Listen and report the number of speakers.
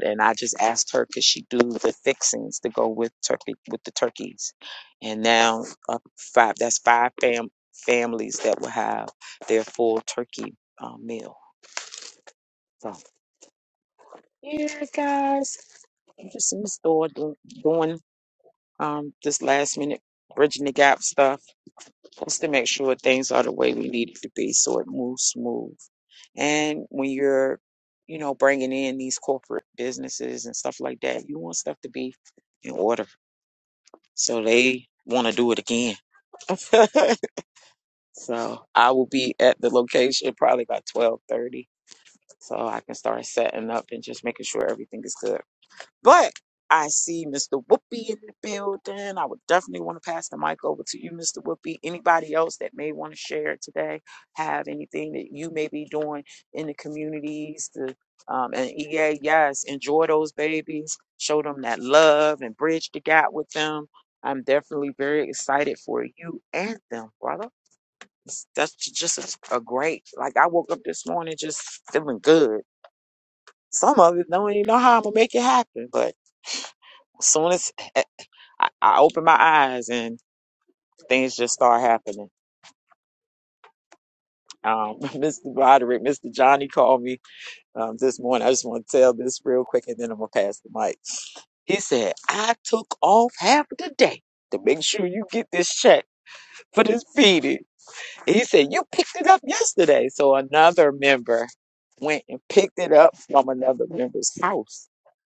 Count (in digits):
1